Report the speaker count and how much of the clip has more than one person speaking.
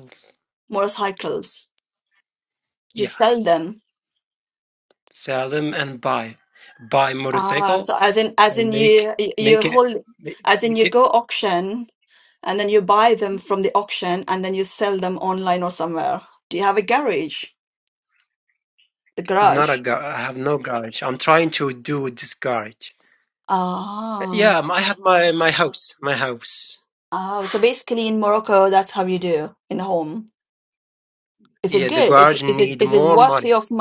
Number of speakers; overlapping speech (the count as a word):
two, about 12%